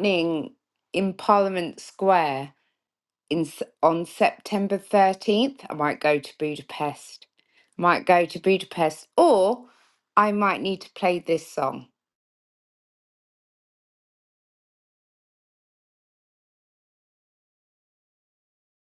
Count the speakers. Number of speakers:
1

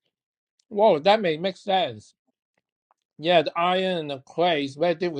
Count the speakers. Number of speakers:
1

